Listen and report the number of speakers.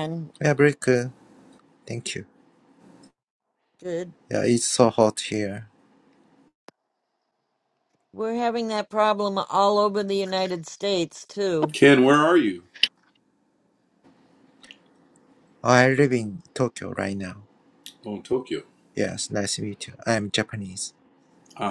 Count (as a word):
three